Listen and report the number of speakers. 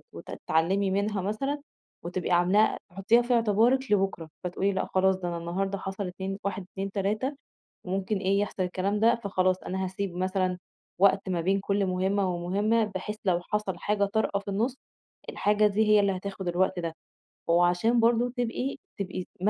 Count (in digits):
1